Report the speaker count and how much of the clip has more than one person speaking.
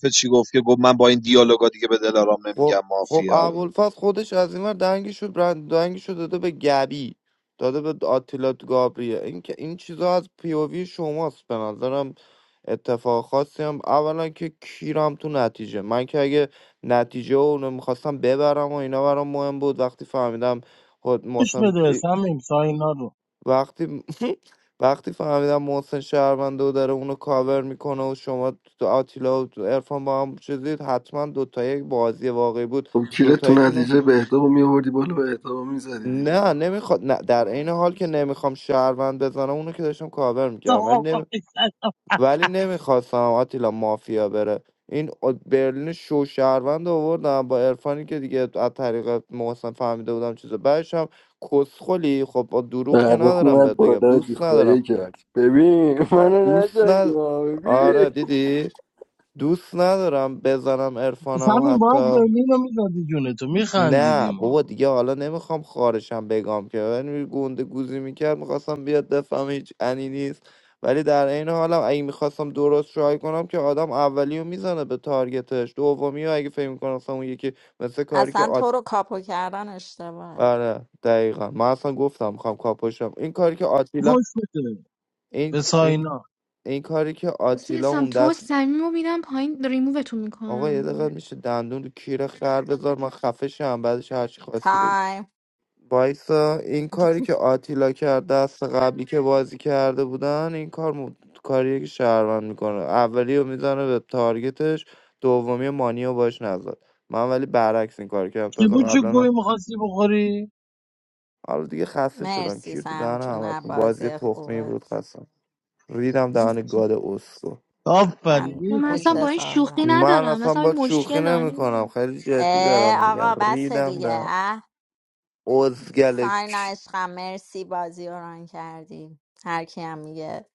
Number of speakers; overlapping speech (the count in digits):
6, about 14%